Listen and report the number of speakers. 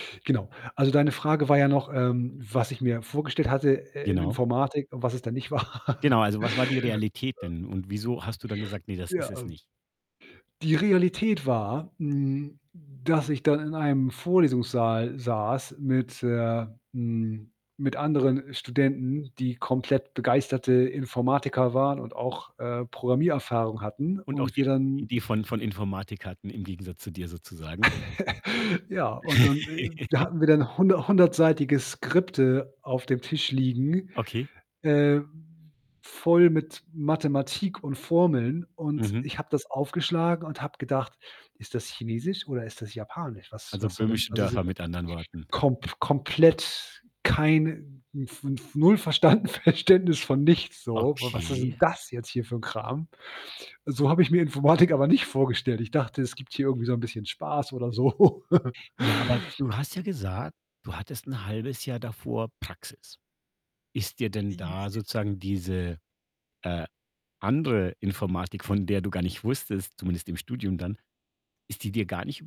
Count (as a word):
two